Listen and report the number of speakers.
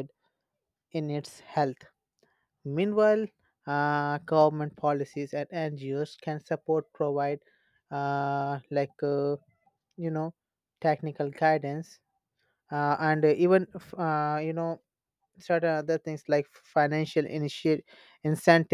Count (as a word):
one